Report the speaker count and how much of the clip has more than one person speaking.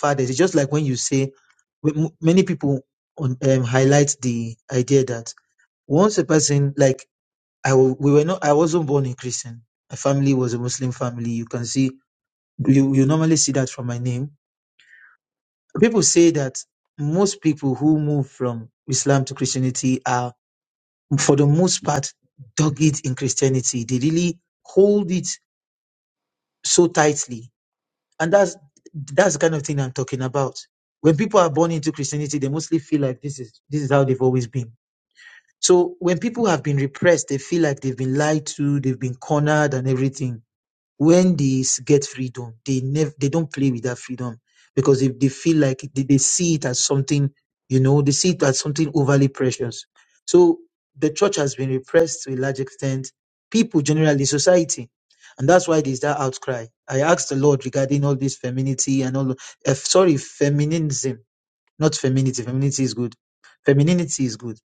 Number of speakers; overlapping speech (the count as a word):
one, no overlap